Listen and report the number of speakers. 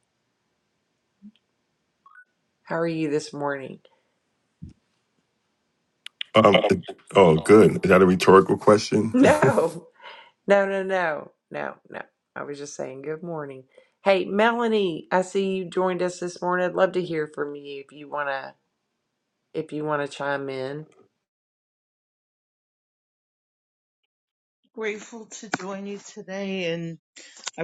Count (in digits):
3